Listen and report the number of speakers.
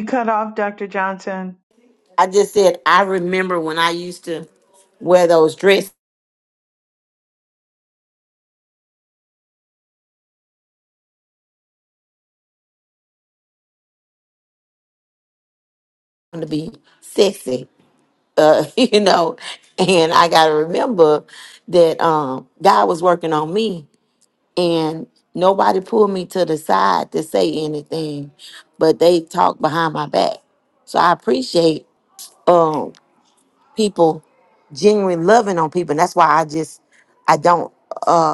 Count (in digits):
2